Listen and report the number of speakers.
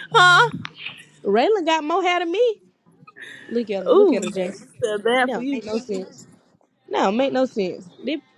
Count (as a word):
two